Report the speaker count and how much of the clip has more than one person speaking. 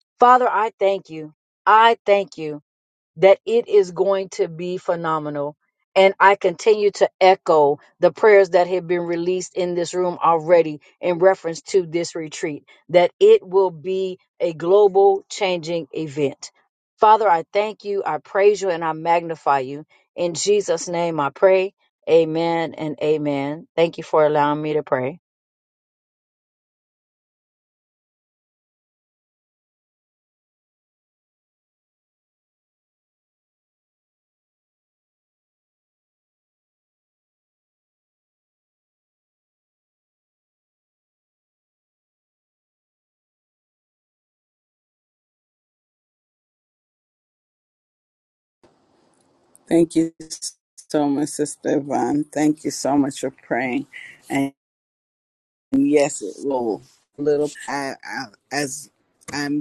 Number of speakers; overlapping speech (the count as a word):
two, no overlap